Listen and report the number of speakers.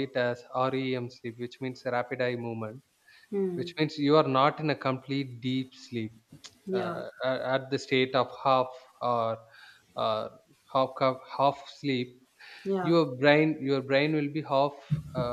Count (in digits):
2